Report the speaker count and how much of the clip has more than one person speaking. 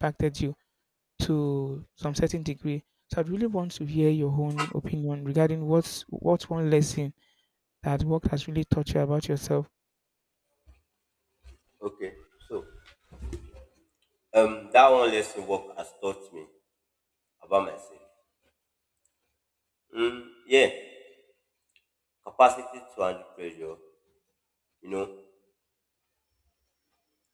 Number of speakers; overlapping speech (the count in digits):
2, no overlap